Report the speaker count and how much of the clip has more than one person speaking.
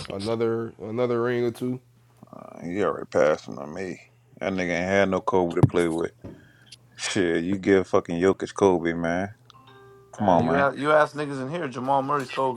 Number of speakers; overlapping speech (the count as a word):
three, about 4%